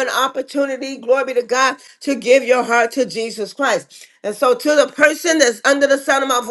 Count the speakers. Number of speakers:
1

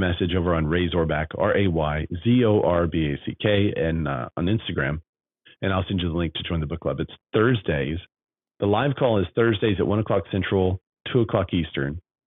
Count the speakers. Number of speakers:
1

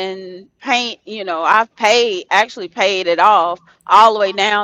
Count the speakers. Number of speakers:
1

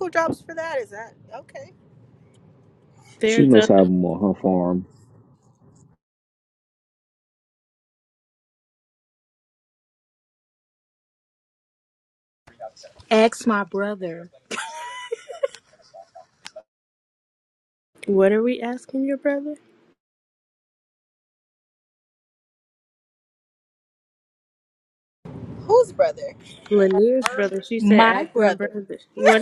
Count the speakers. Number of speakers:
4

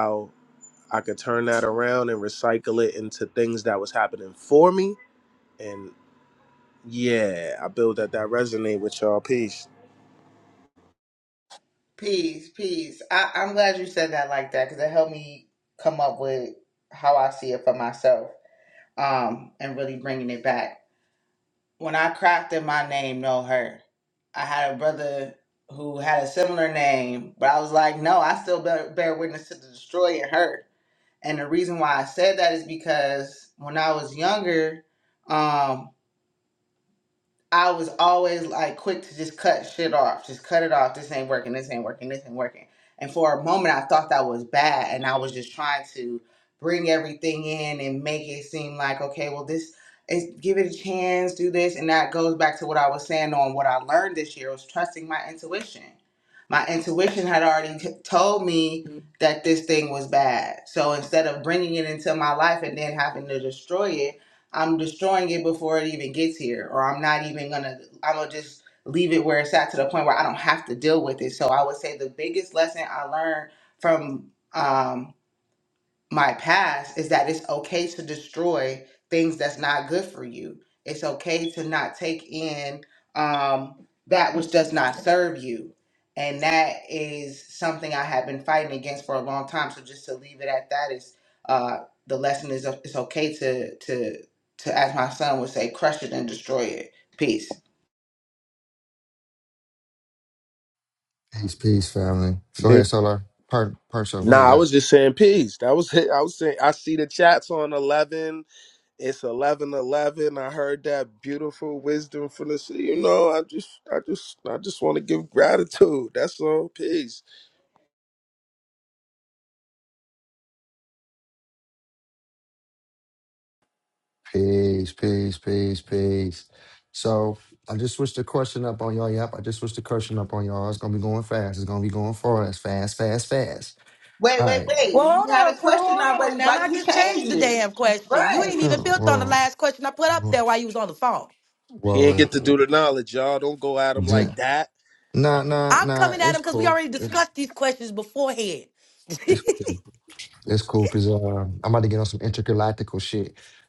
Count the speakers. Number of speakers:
4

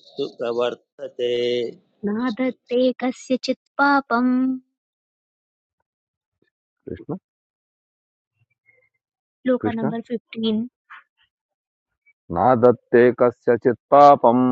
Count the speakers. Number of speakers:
3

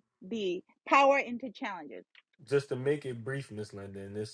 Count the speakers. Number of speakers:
2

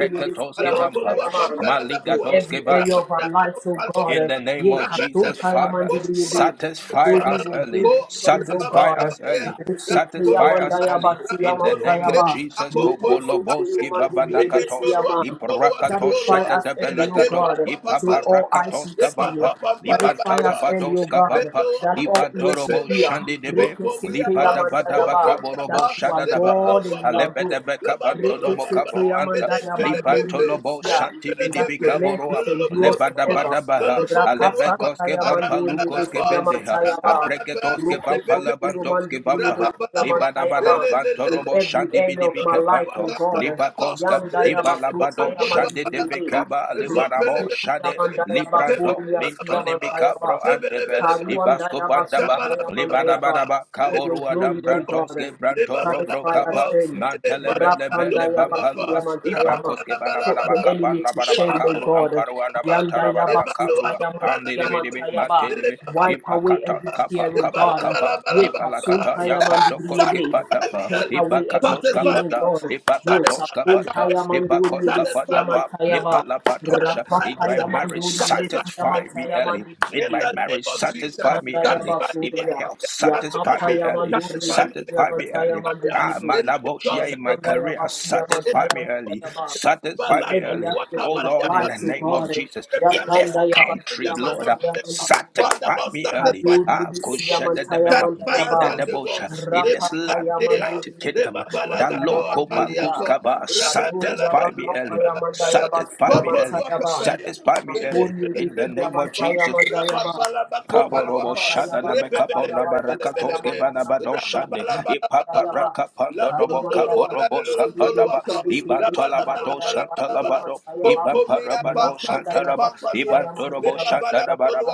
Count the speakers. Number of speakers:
3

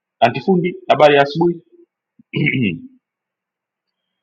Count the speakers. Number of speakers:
1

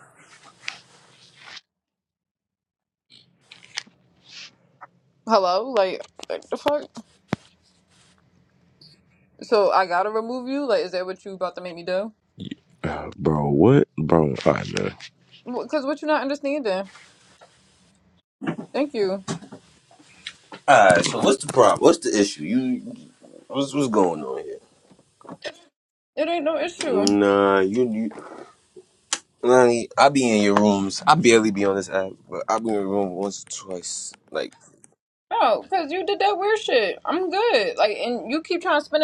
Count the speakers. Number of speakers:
3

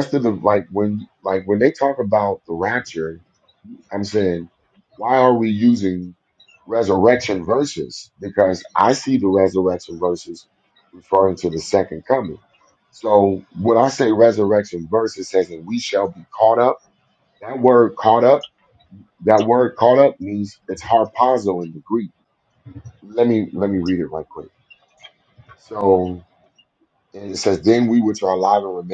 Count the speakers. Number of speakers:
1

